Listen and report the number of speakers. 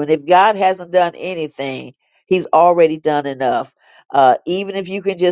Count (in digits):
1